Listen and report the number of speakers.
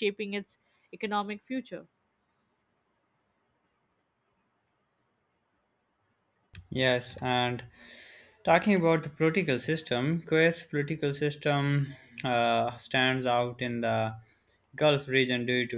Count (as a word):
two